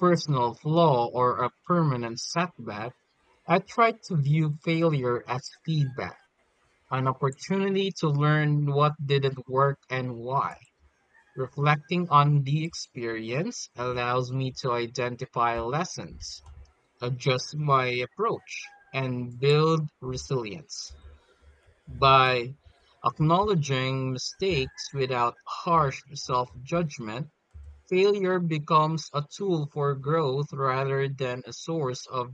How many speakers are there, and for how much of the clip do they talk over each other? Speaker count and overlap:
one, no overlap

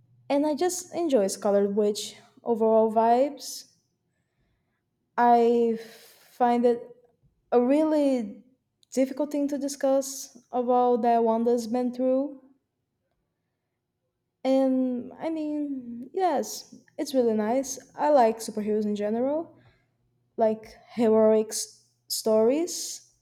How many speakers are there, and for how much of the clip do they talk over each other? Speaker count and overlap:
one, no overlap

